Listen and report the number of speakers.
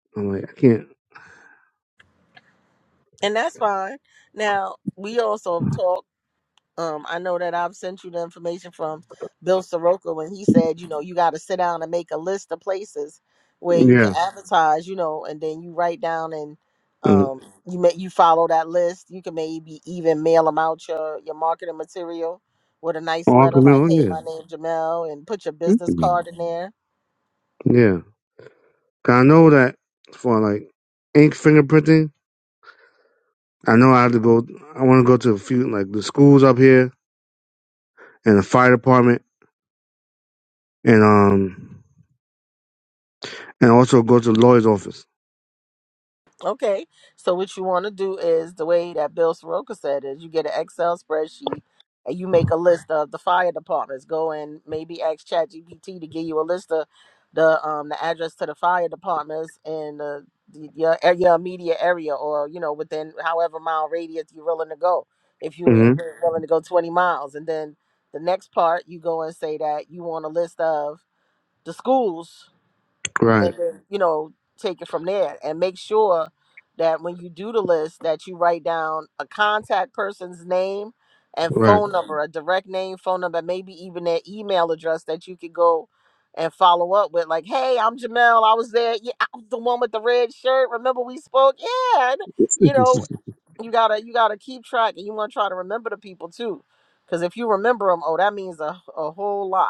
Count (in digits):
2